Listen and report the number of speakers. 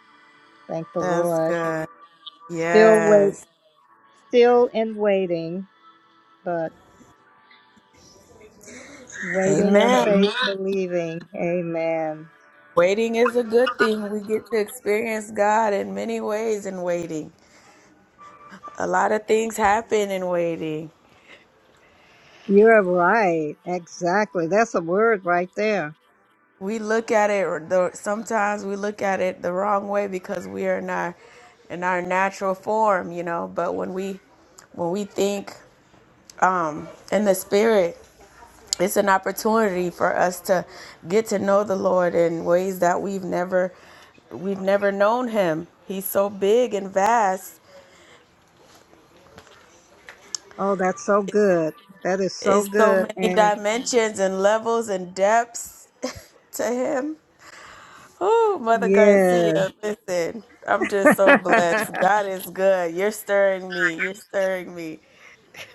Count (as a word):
two